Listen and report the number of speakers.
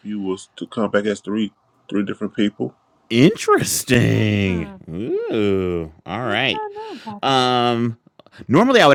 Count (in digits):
3